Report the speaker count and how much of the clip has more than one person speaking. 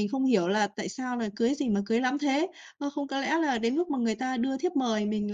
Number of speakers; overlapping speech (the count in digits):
1, no overlap